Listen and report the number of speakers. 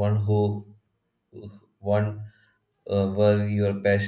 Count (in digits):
1